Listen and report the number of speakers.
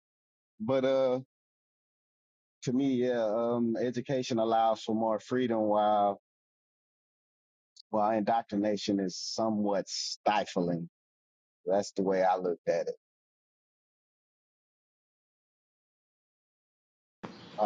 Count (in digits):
1